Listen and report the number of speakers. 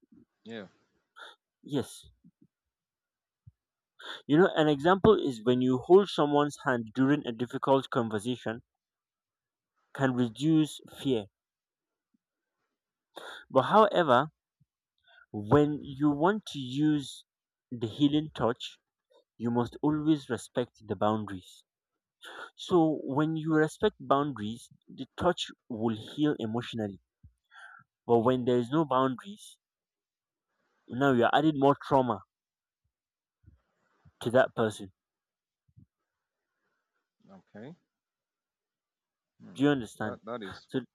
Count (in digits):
2